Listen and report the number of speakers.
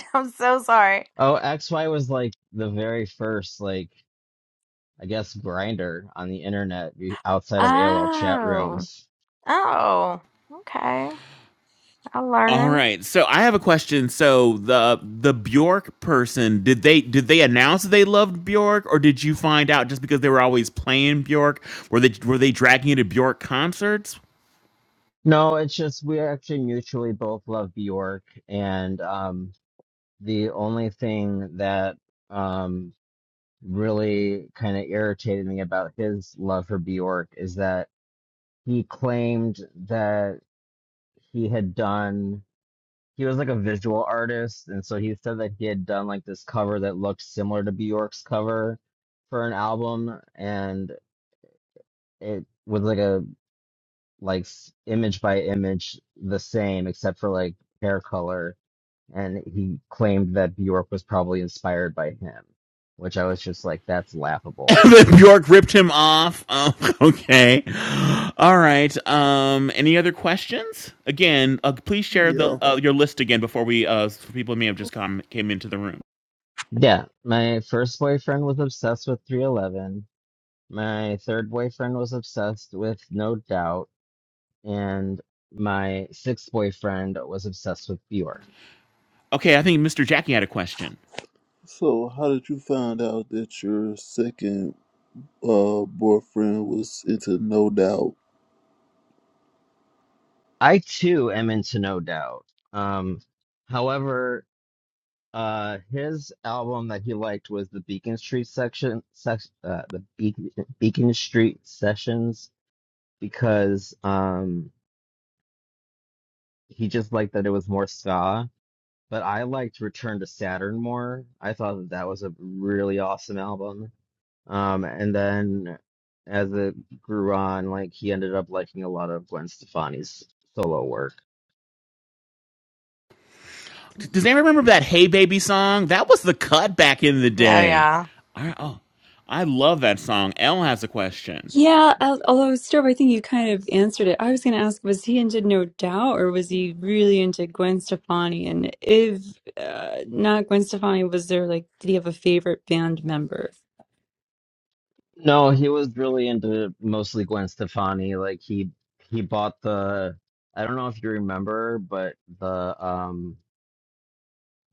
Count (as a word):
five